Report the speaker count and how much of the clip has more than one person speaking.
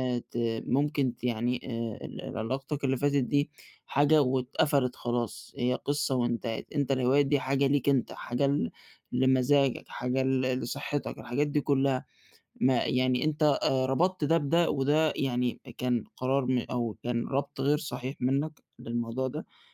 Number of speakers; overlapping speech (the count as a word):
one, no overlap